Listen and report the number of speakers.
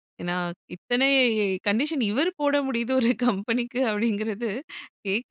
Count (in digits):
1